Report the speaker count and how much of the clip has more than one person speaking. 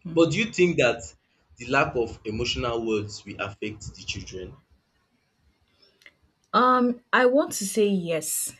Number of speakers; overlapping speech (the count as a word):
two, about 1%